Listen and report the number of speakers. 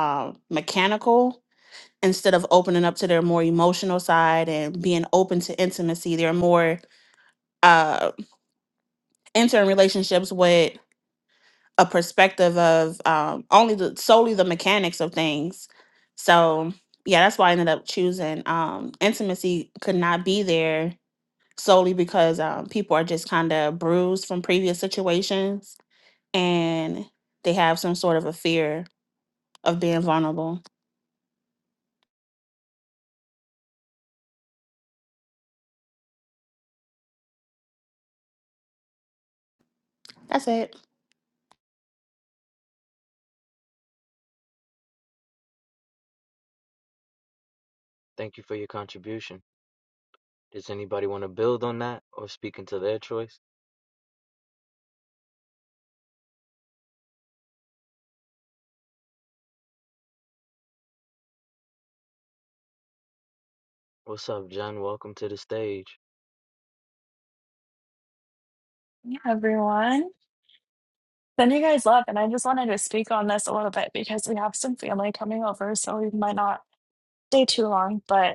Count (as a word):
three